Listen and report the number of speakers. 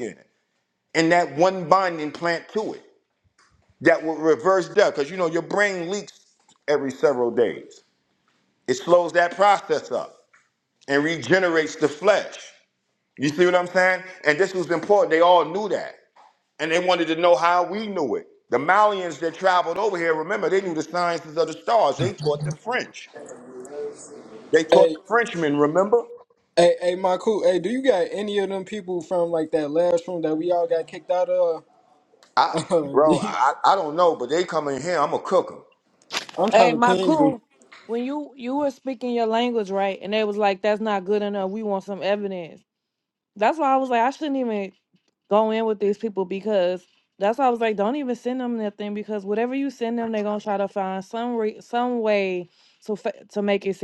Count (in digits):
3